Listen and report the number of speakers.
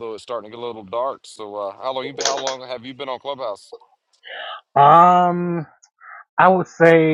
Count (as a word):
two